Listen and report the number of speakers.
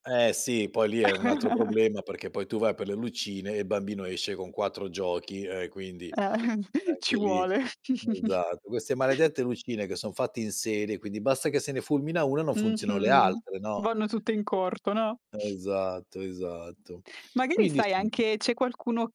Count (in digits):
2